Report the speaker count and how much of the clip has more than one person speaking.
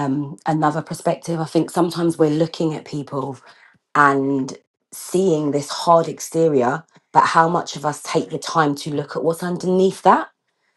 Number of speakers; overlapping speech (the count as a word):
one, no overlap